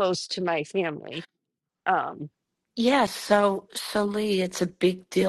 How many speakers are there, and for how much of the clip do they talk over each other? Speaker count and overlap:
2, no overlap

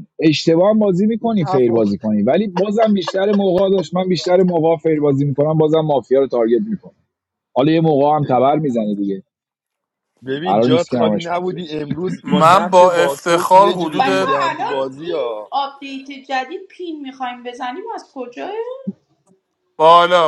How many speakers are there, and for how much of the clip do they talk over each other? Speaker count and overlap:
4, about 26%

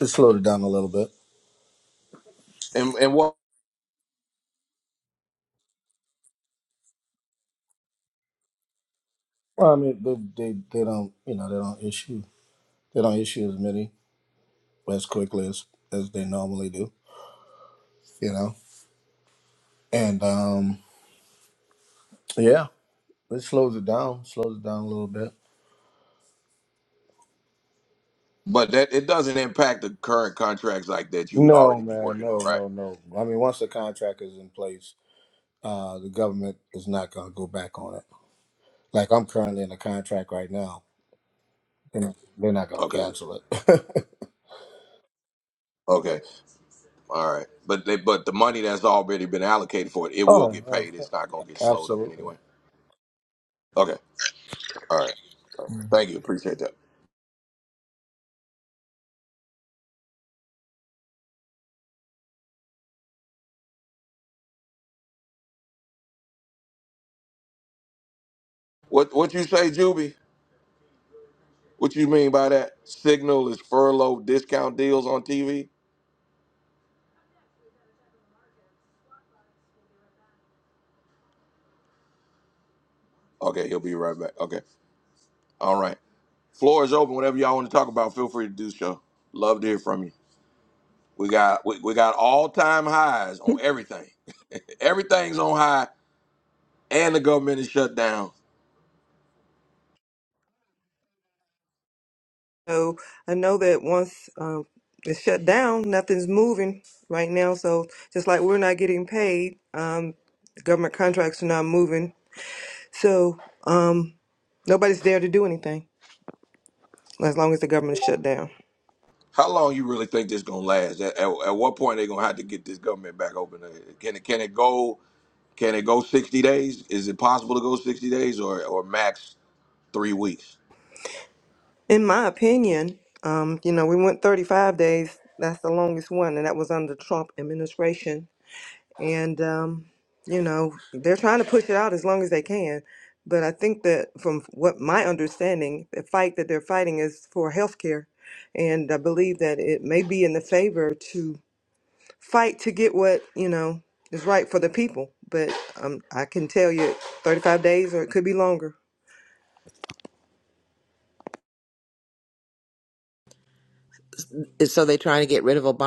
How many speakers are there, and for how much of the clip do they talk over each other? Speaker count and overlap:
4, about 2%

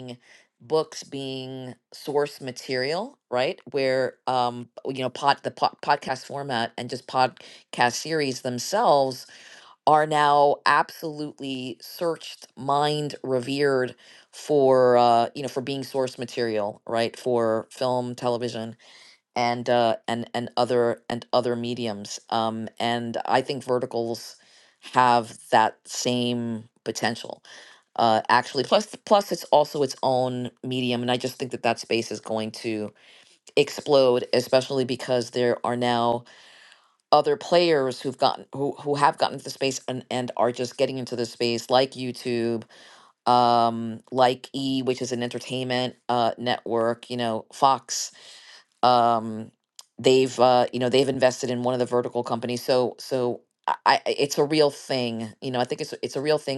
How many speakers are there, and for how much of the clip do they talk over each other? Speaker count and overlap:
1, no overlap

